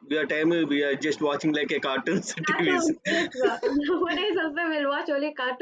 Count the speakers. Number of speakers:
2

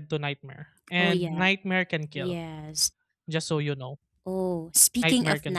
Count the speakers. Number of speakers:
2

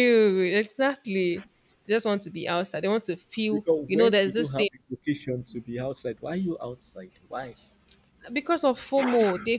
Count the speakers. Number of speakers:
2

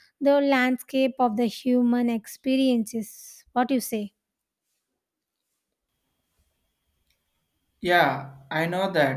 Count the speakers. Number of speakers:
2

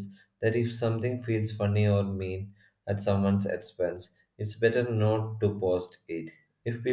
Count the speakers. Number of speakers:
1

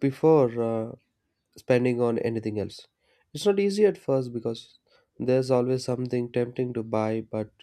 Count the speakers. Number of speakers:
1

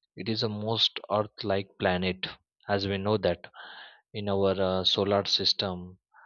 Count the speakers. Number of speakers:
1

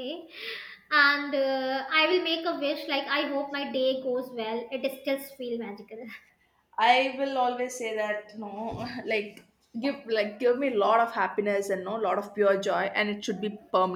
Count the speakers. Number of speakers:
2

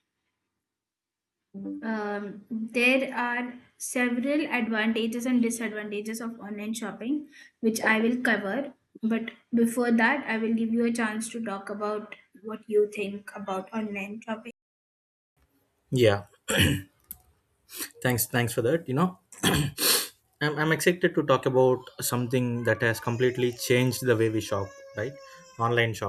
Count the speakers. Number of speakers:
2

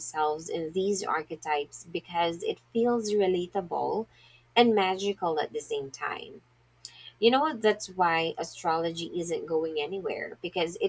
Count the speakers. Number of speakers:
1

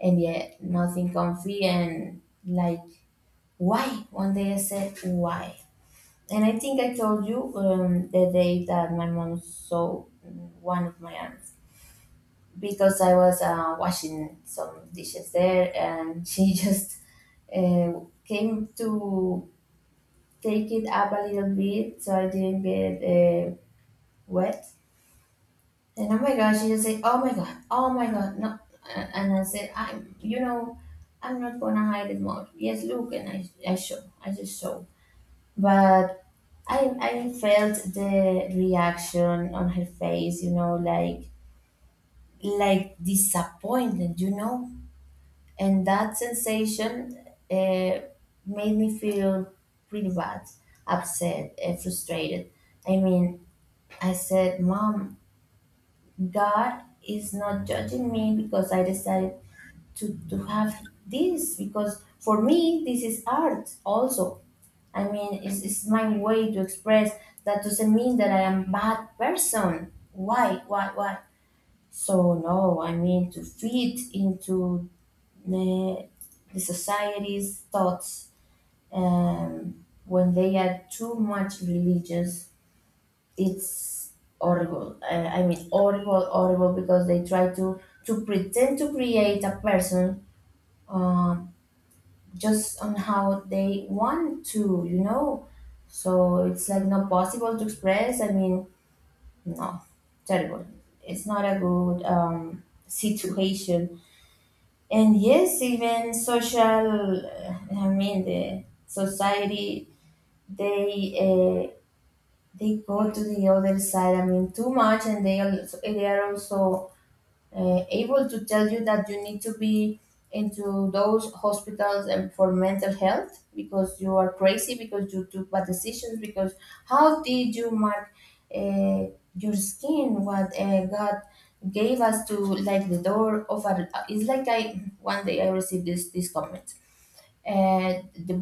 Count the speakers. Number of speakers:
1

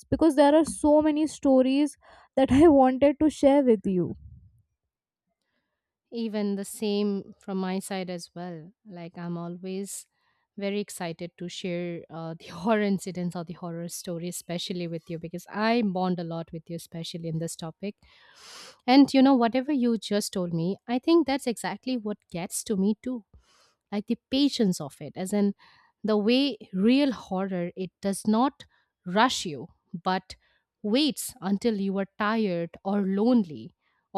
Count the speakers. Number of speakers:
2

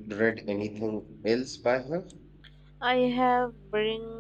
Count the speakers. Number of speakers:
2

